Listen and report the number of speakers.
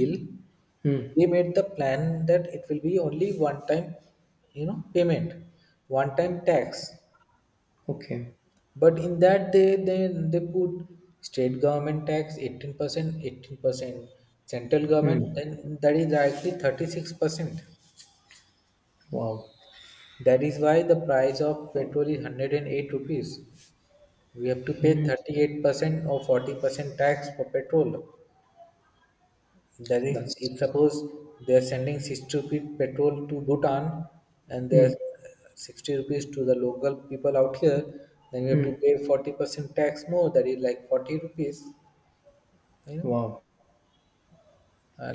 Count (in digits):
2